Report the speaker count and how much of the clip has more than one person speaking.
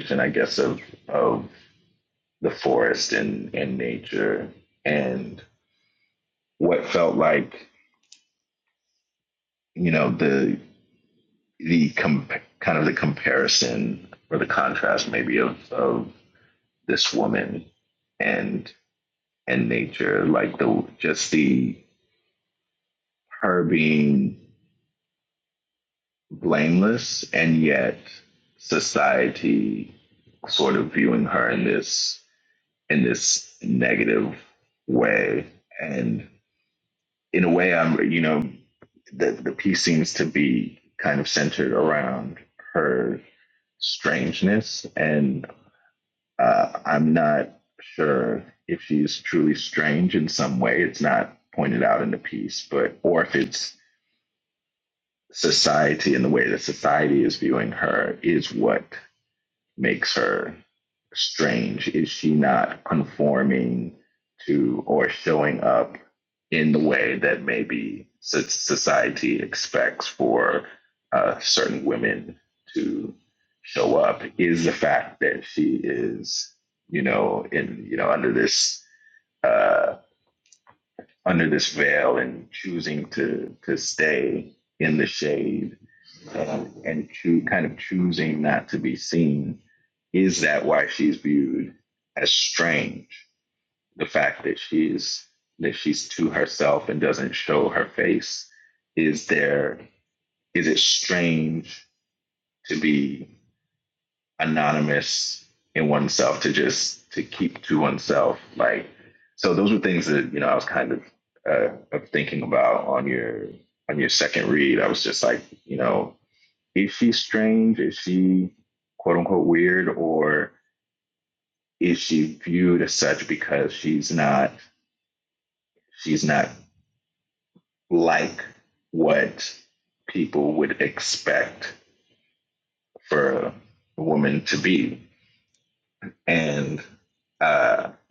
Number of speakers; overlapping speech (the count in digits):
1, no overlap